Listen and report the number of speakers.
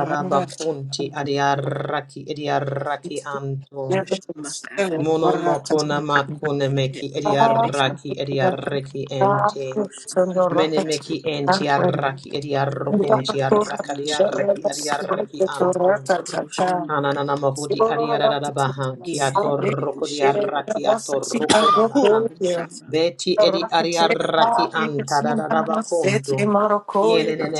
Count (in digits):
3